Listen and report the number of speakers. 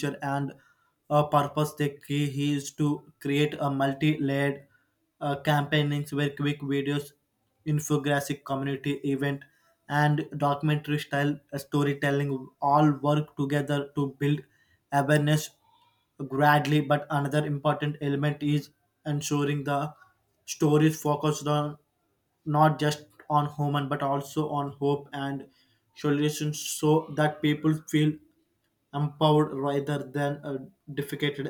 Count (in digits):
1